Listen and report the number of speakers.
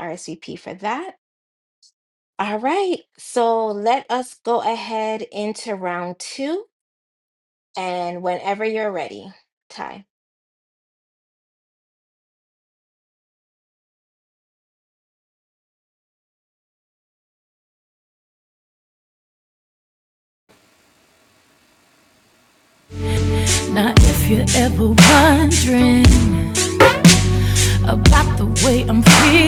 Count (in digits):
2